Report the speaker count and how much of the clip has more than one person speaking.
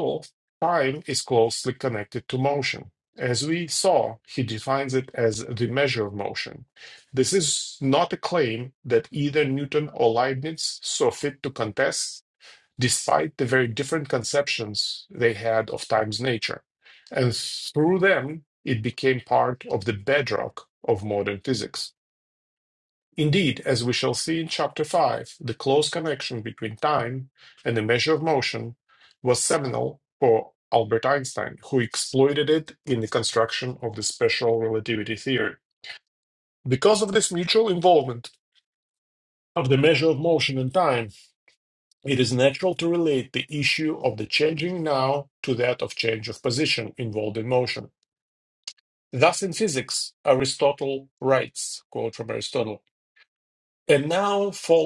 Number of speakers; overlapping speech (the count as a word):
one, no overlap